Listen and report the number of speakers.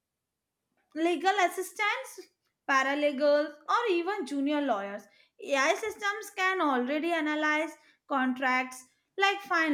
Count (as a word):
one